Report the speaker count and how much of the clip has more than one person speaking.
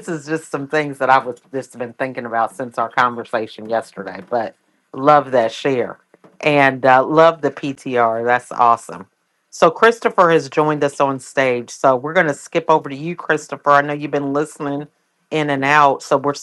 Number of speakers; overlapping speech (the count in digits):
1, no overlap